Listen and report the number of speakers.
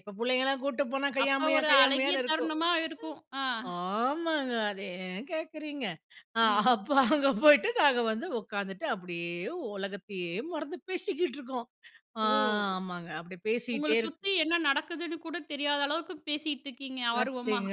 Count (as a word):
two